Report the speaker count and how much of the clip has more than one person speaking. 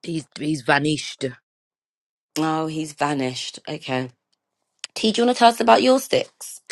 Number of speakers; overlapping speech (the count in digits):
2, no overlap